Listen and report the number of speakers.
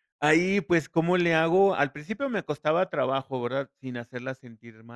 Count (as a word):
one